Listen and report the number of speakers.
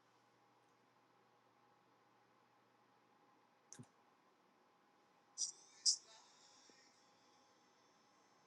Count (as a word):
zero